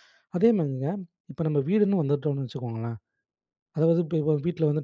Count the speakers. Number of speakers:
one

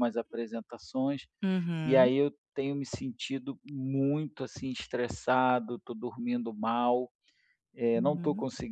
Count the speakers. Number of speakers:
two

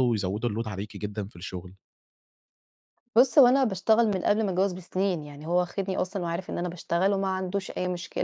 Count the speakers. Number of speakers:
two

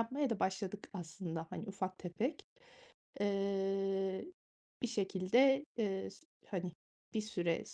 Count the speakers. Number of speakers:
one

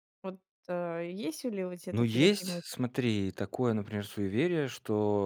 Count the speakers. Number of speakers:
two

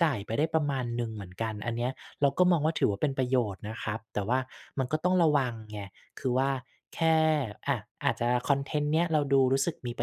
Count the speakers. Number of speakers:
one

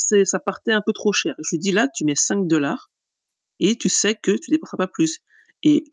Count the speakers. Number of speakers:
one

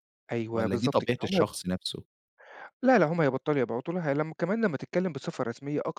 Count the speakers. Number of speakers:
two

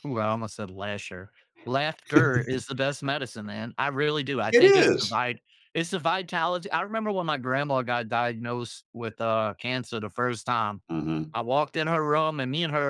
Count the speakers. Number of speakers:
two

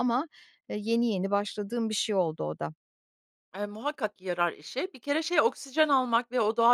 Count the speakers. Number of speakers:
two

